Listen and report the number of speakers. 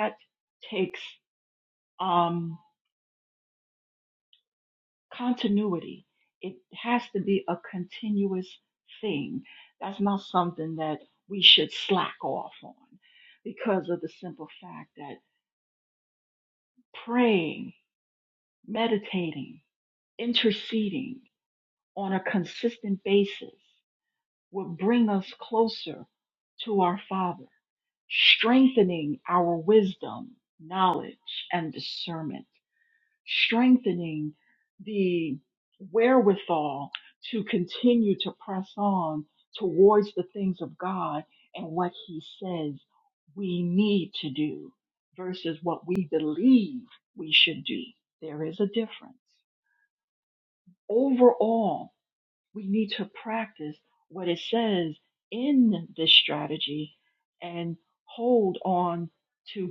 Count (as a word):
one